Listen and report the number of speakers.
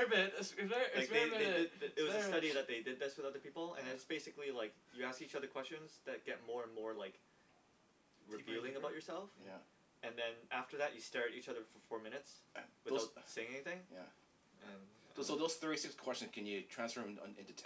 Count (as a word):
three